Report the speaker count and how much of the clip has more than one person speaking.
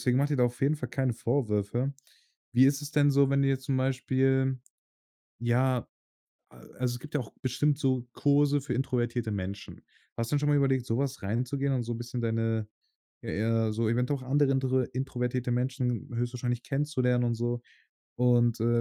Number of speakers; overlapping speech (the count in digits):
1, no overlap